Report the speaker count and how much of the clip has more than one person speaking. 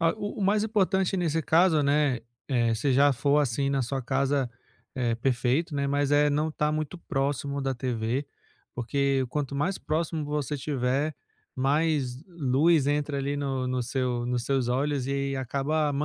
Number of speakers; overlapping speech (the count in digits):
1, no overlap